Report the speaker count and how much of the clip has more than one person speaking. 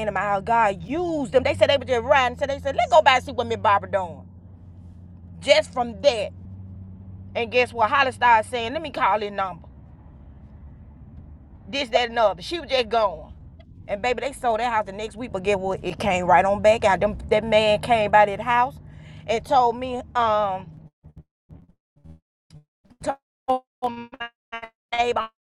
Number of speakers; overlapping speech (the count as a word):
one, no overlap